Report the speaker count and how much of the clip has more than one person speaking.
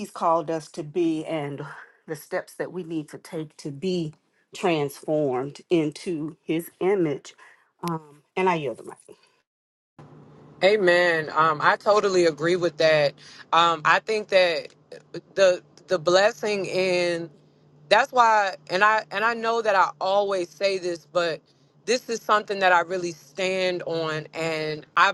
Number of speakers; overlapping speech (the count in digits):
2, no overlap